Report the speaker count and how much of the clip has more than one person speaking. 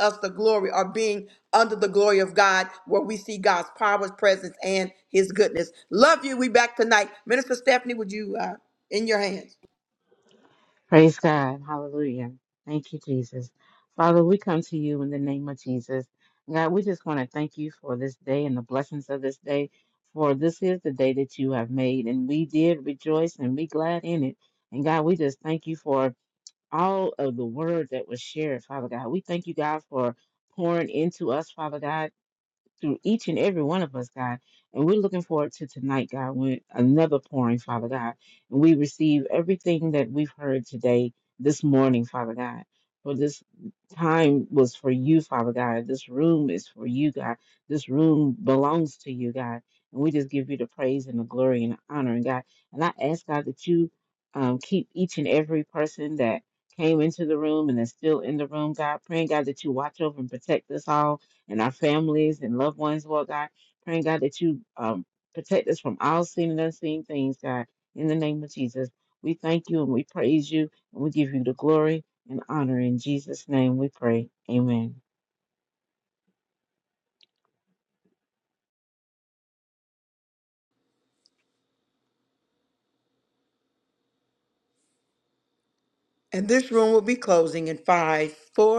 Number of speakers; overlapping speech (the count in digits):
2, no overlap